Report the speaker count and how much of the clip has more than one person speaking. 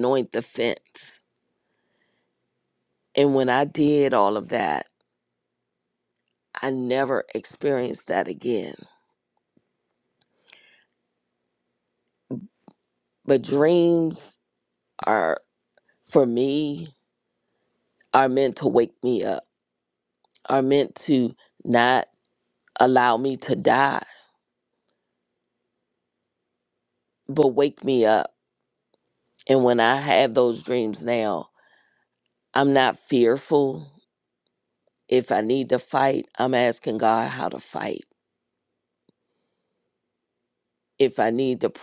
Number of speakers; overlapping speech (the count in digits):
1, no overlap